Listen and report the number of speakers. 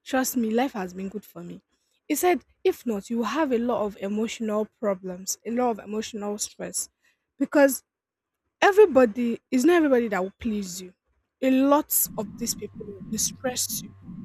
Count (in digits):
1